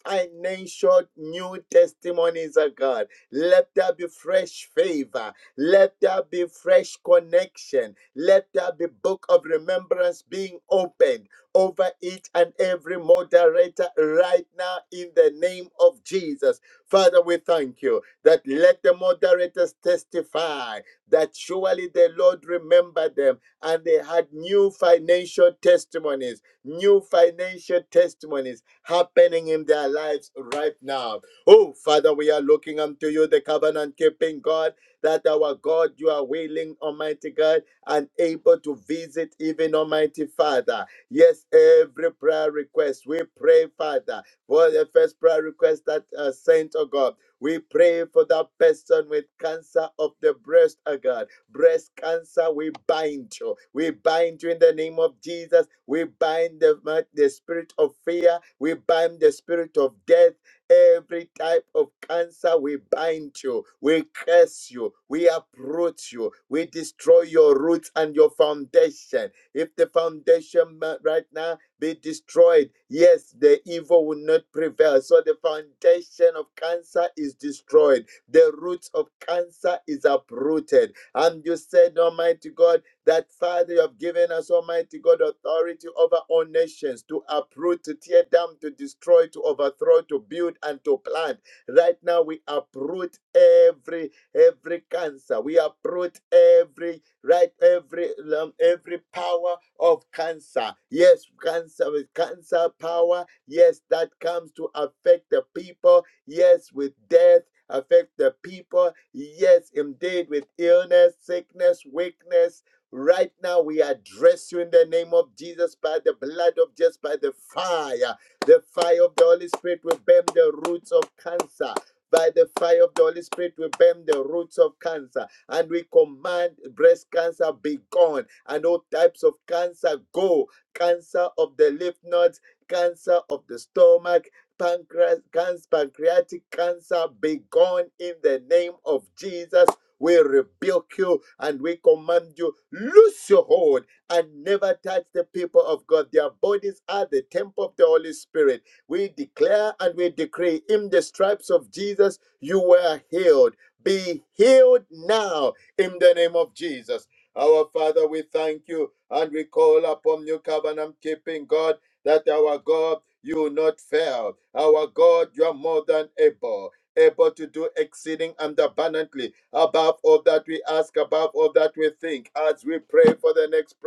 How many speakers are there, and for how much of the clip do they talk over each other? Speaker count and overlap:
1, no overlap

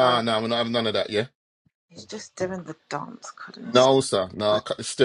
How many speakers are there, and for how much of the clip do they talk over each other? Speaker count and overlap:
2, about 4%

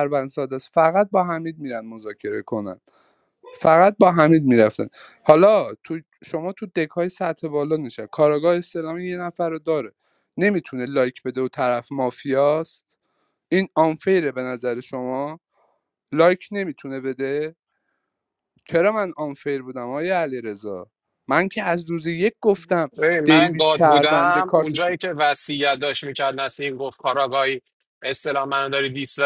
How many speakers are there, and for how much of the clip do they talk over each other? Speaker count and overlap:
2, about 6%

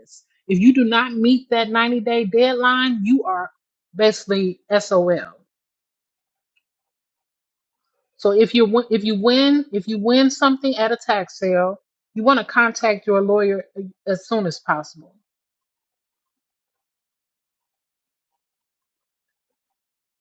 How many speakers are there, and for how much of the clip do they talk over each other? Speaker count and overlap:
1, no overlap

